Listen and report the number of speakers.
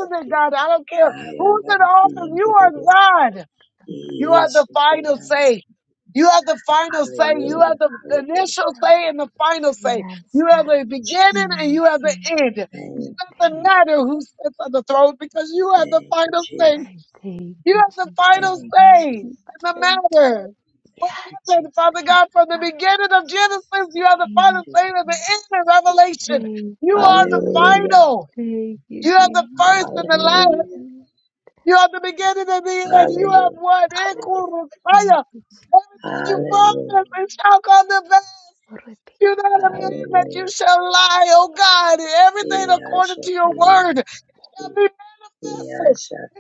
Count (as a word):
three